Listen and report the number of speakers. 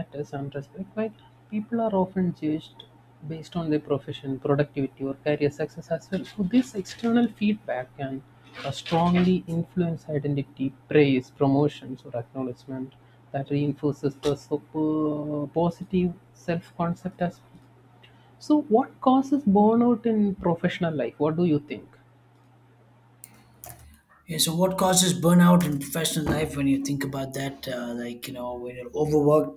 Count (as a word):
two